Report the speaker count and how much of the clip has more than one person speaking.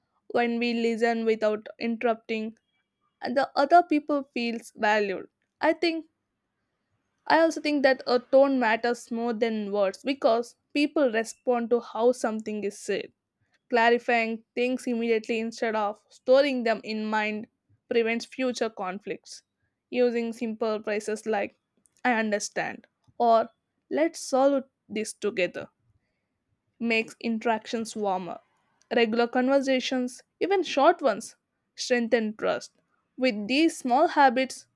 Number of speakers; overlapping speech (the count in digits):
1, no overlap